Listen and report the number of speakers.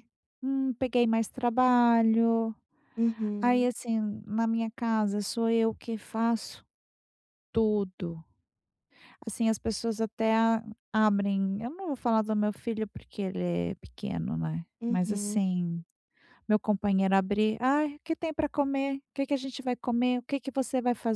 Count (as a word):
two